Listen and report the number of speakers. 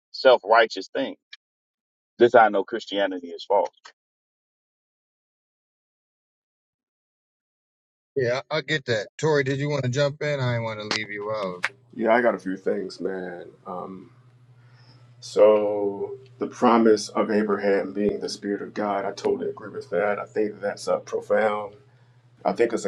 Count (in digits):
3